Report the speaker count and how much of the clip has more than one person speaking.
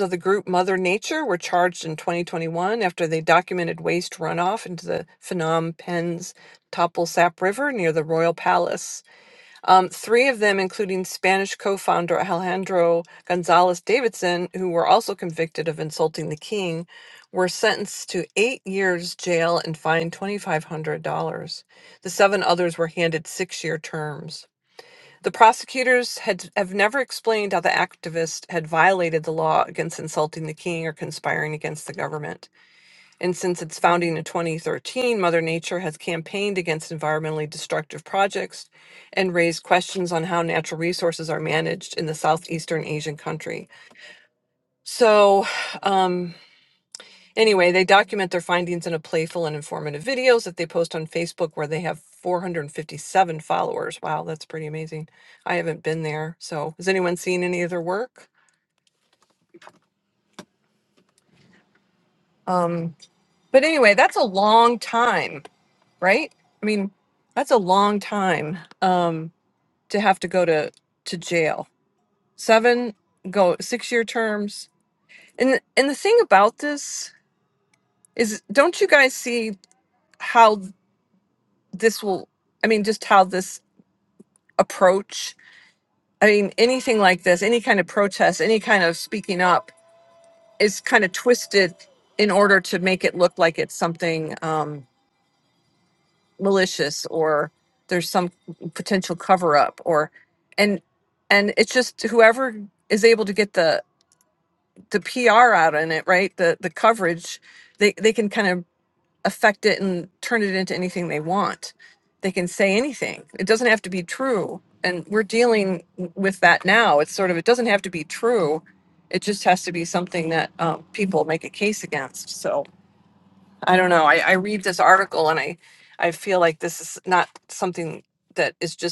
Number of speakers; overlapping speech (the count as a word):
one, no overlap